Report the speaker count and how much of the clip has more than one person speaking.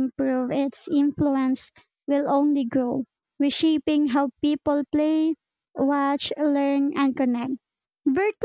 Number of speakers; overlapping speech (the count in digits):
1, no overlap